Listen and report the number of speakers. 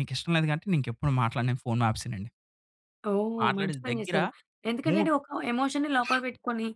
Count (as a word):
two